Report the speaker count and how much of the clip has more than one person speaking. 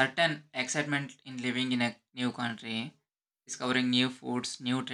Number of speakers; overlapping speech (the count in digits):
1, no overlap